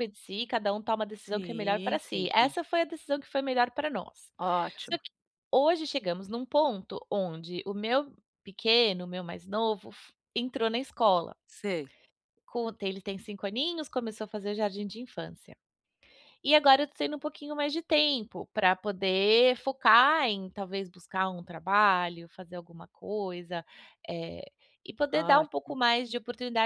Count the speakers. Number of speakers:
two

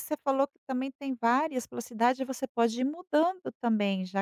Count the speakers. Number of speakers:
one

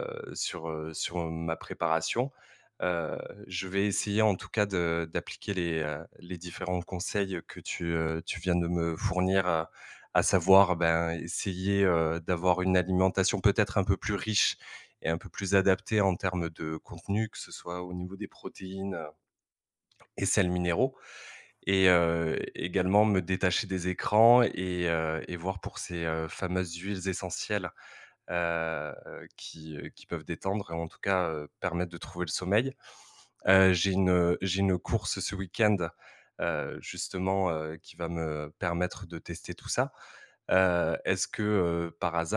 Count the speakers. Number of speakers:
one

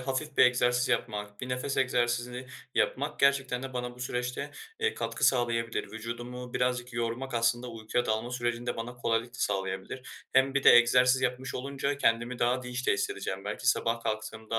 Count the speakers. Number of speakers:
one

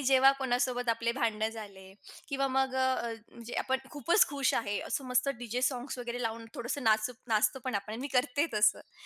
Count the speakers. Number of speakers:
one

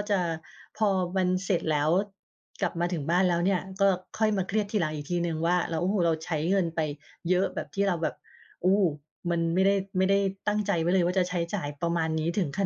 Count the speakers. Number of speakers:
one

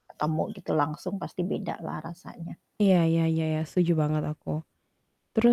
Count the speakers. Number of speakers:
two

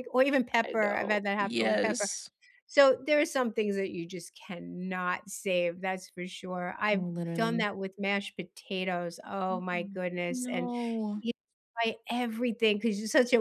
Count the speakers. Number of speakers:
two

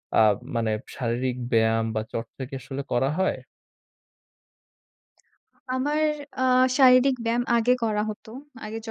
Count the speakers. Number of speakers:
two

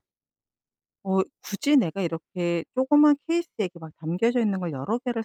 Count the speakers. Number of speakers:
one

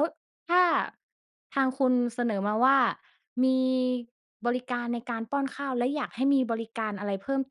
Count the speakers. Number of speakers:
one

